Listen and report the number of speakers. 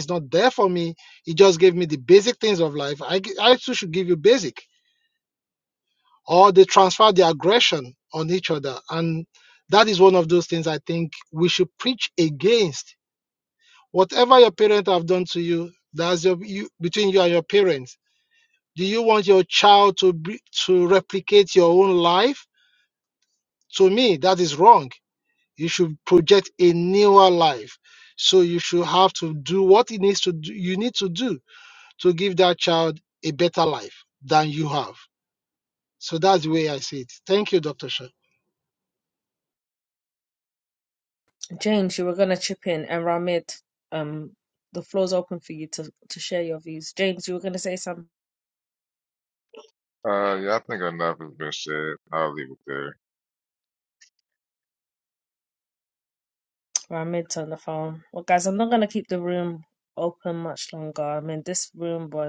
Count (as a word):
three